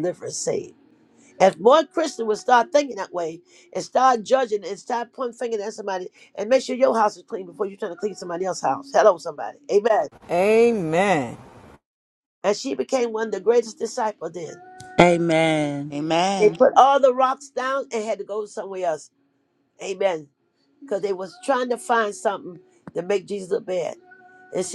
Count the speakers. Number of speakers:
3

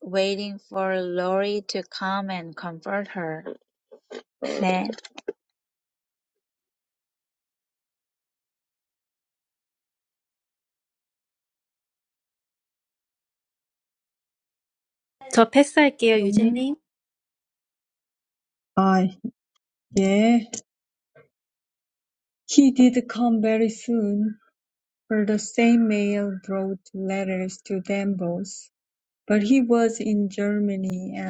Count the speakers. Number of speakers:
3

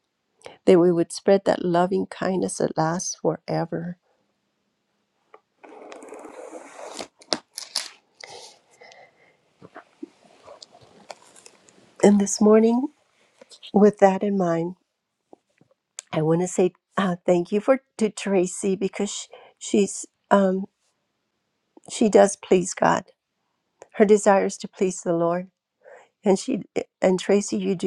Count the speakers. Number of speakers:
1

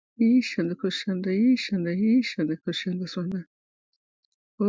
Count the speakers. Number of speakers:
1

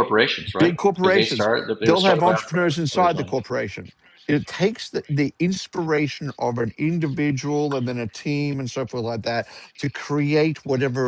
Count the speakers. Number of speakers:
2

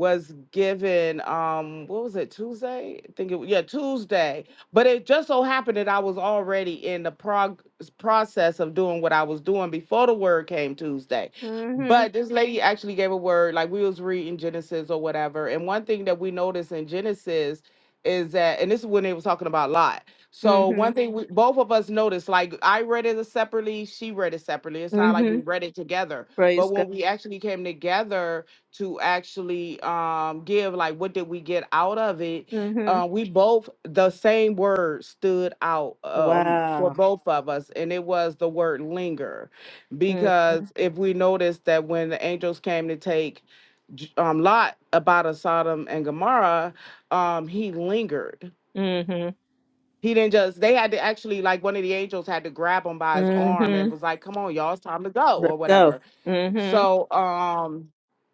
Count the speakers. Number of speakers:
2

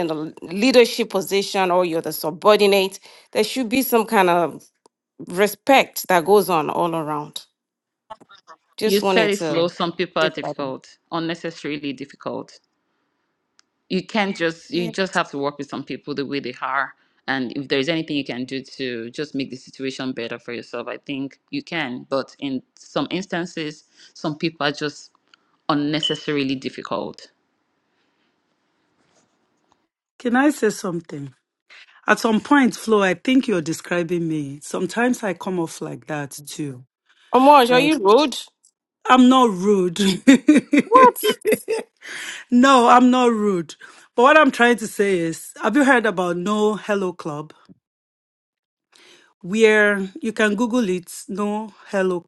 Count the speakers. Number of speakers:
3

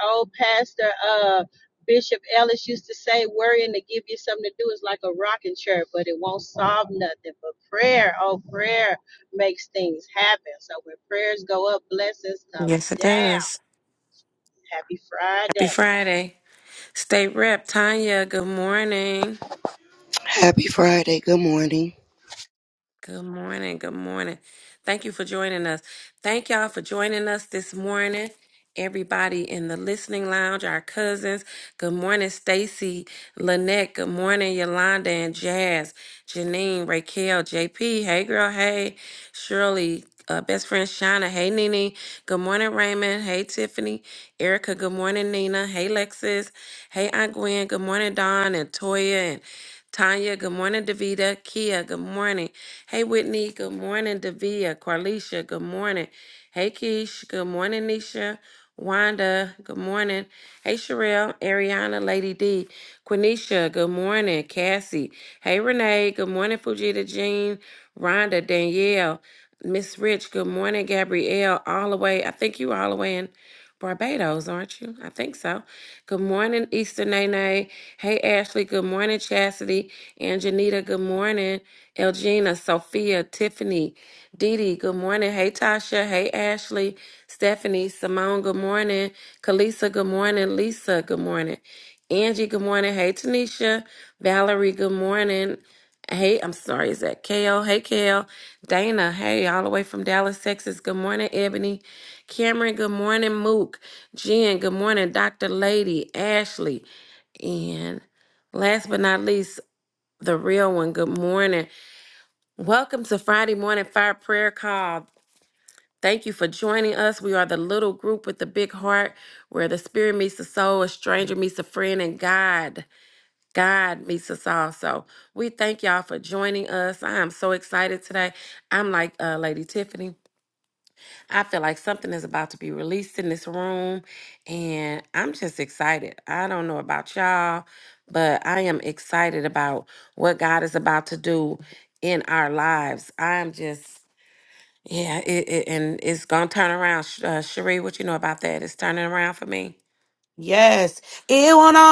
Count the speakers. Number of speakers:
4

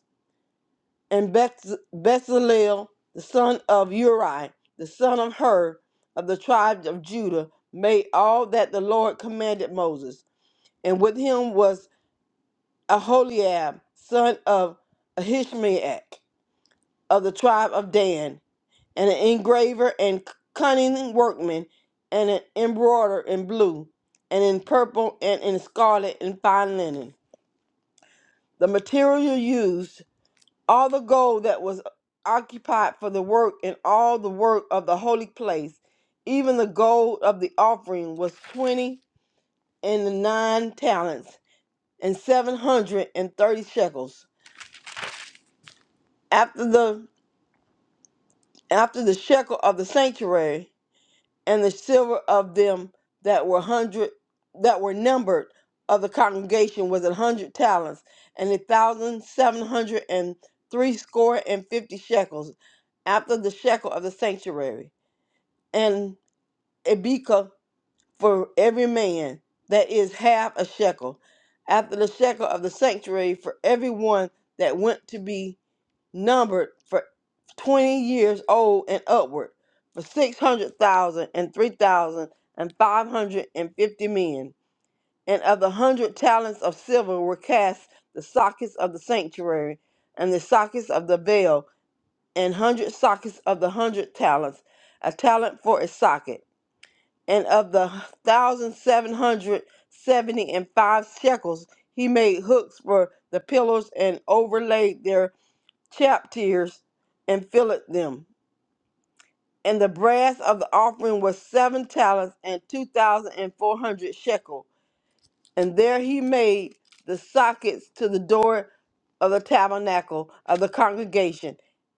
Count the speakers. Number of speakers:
1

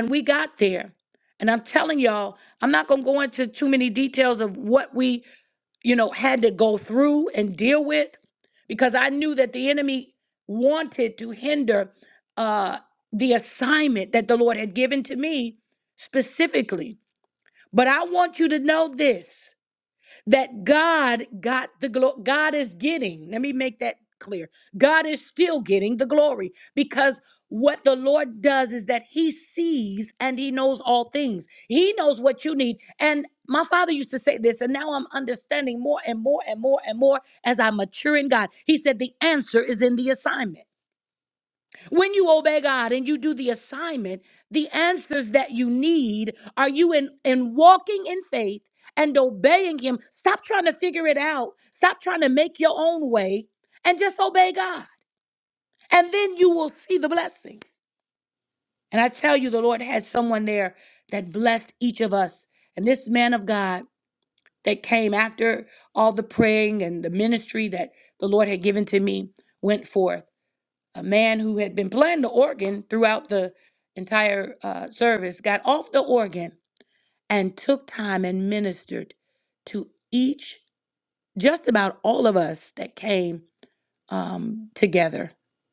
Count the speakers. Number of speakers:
1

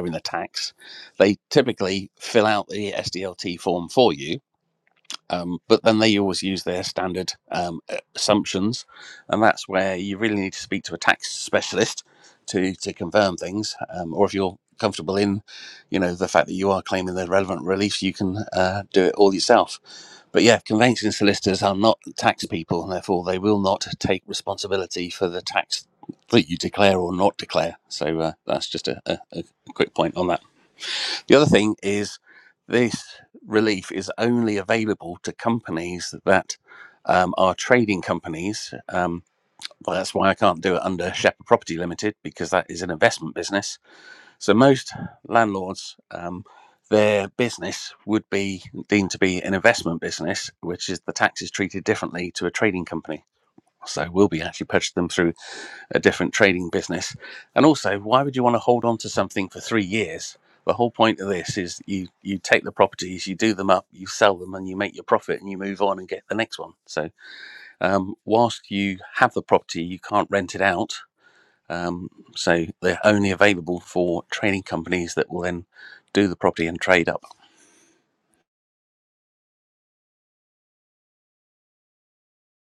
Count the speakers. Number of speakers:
1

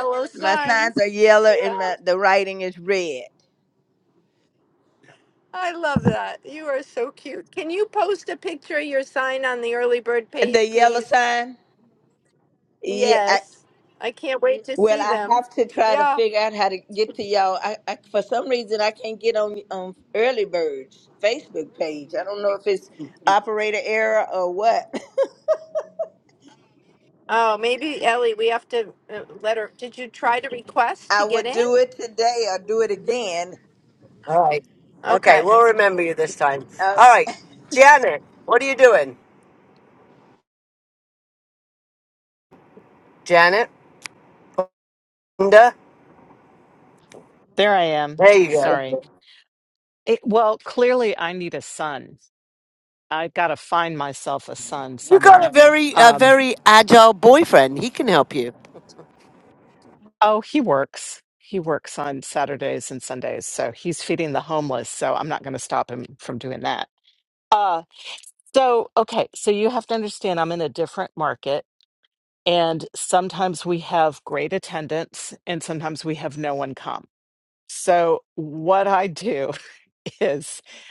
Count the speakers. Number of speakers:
4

